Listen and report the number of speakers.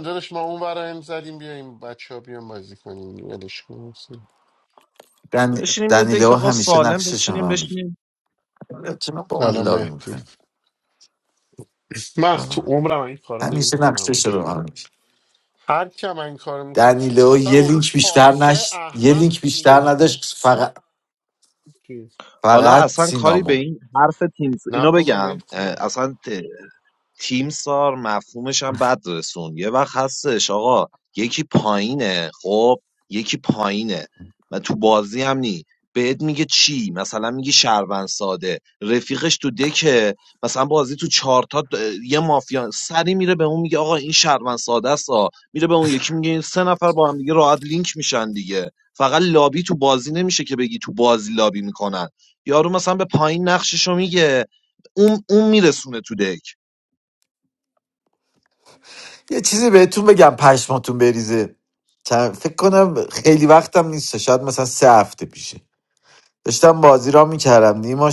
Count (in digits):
3